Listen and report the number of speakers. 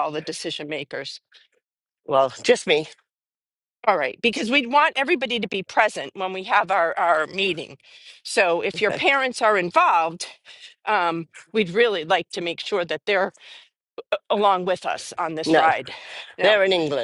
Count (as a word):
two